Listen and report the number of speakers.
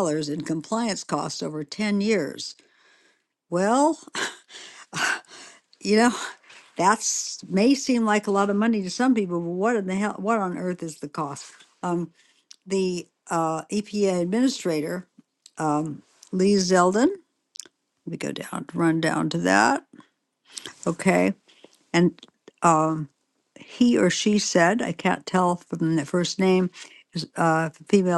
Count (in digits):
1